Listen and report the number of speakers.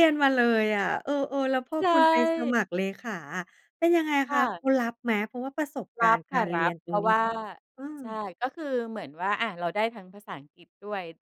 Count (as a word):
two